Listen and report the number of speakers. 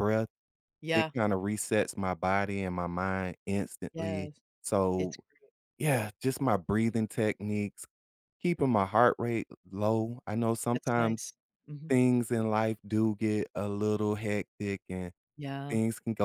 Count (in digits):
2